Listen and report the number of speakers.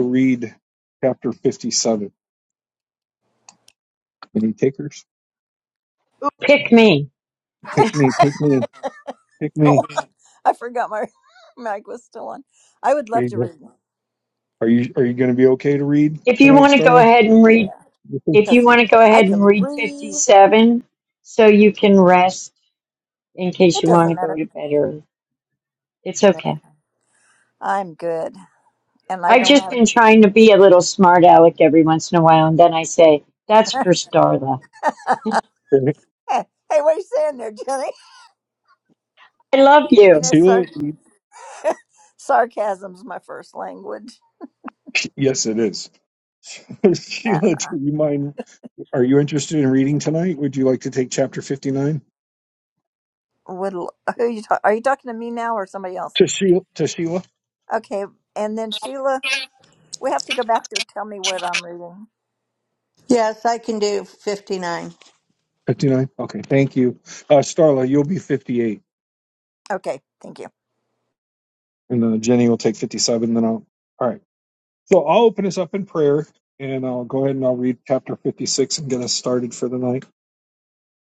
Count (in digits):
4